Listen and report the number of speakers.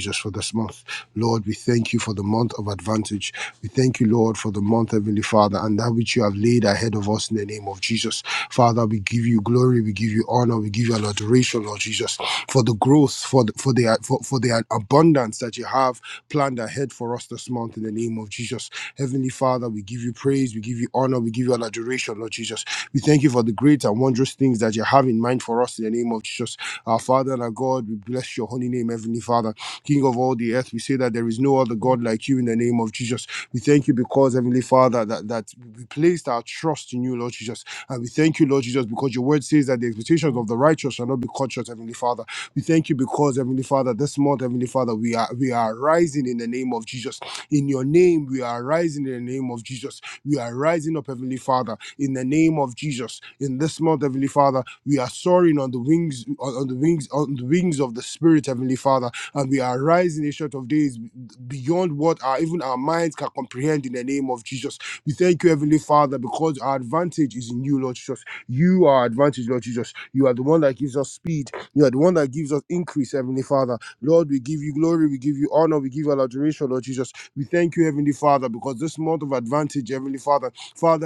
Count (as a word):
one